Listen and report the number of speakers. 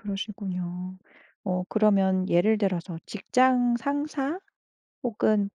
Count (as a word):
one